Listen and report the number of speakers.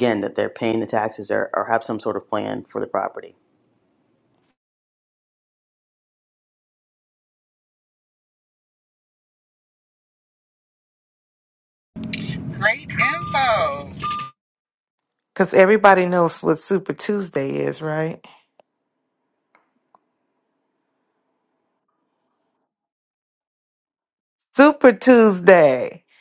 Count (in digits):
3